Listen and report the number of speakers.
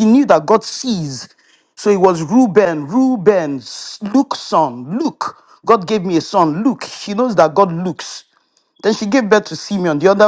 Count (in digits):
1